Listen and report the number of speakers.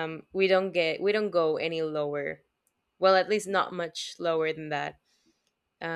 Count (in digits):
1